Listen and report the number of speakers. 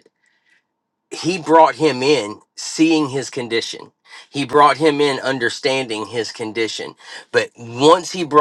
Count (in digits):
1